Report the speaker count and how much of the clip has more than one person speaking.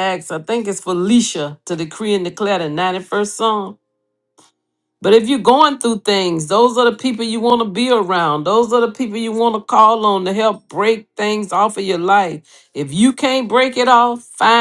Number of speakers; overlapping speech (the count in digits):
1, no overlap